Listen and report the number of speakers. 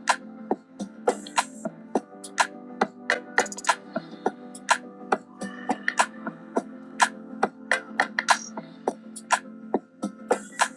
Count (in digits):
0